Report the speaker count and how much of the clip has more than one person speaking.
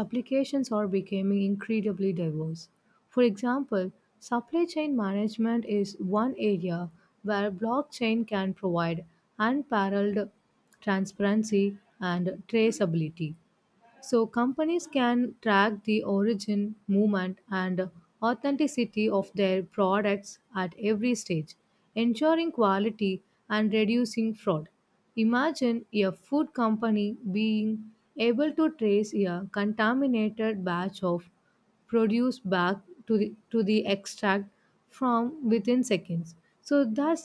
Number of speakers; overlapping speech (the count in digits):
1, no overlap